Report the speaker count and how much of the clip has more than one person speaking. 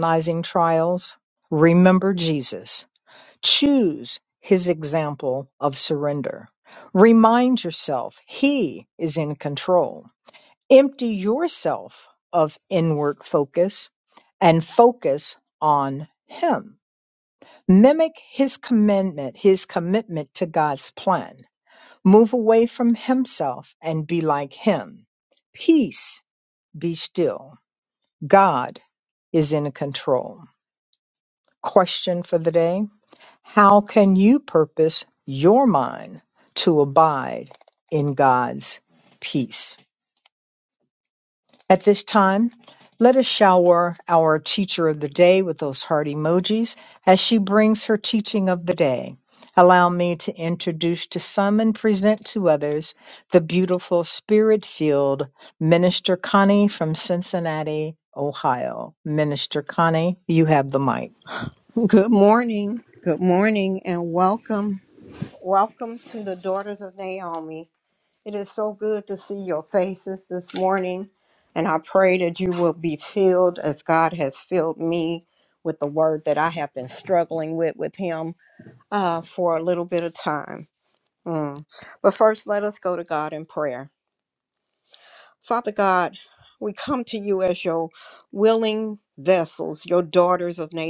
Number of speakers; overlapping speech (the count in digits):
2, no overlap